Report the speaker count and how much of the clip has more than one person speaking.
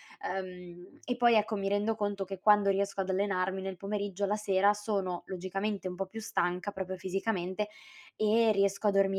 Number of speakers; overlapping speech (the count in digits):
1, no overlap